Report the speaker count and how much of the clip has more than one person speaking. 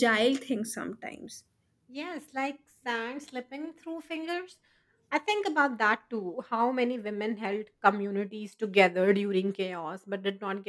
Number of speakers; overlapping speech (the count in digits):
2, no overlap